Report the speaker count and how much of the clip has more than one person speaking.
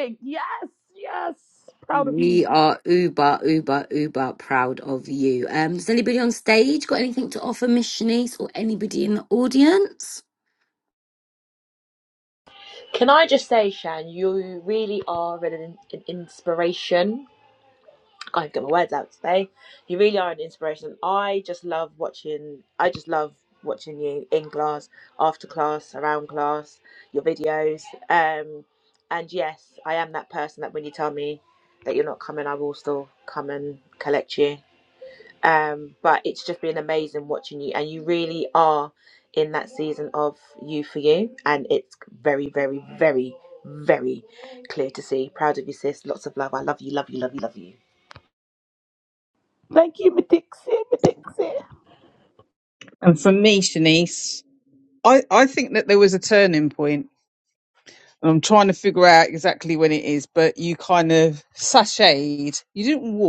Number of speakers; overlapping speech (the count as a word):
four, about 1%